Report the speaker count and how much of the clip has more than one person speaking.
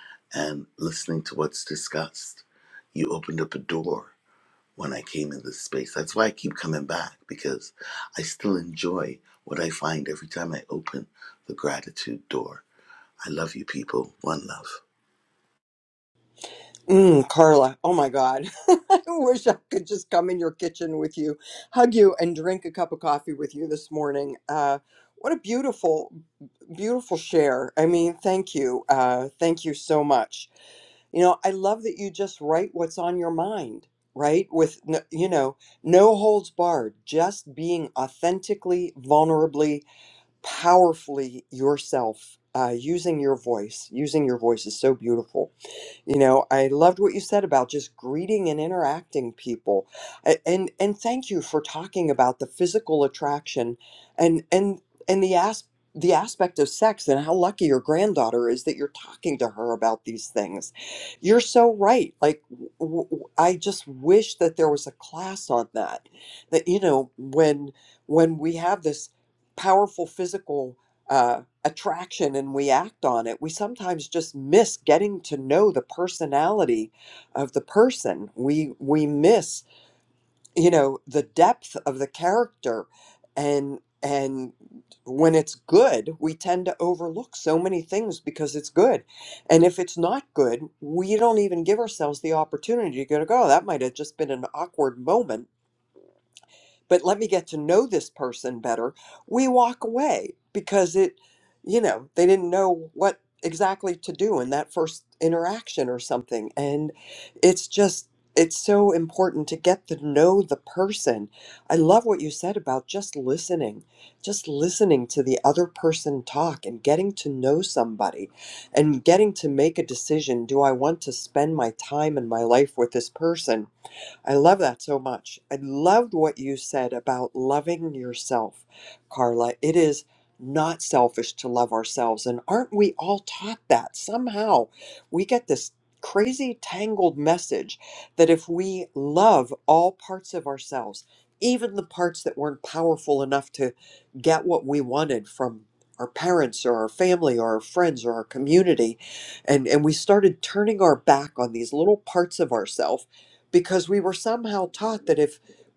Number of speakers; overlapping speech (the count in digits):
2, no overlap